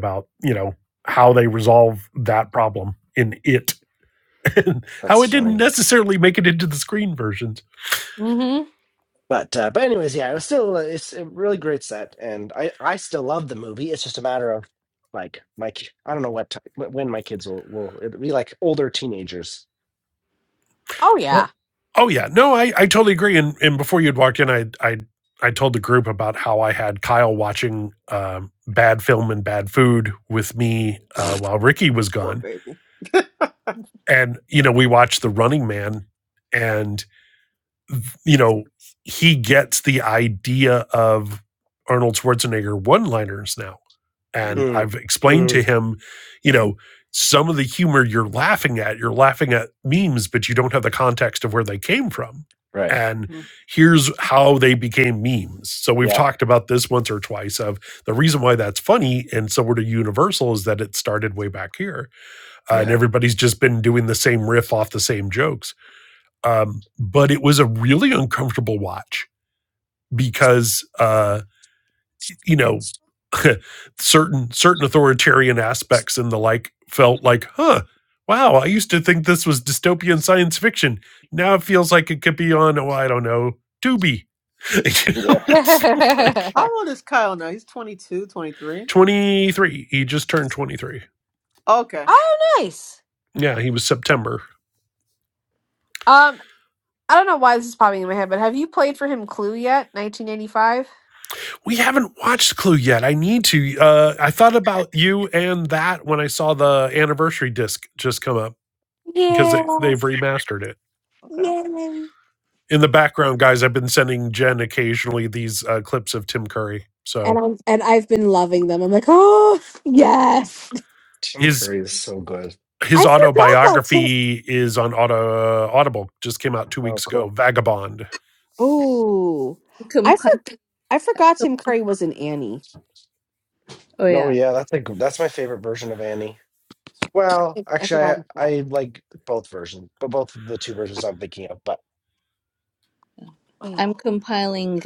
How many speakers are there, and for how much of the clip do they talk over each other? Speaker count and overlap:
5, about 5%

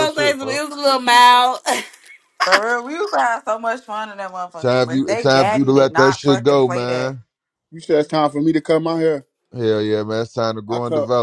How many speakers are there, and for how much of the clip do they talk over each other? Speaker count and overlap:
4, about 32%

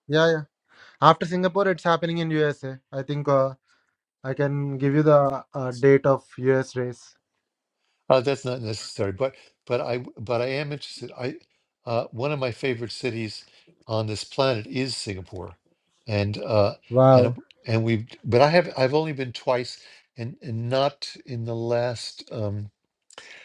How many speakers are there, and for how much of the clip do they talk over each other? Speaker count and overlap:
2, about 1%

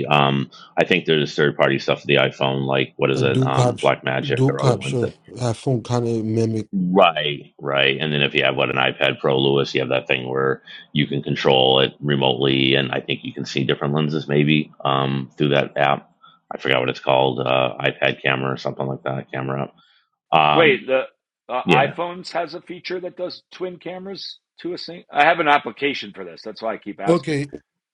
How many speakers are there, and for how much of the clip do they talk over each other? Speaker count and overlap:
3, about 8%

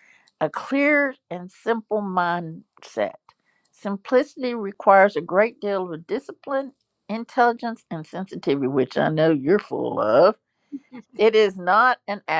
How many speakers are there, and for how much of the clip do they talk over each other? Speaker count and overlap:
1, no overlap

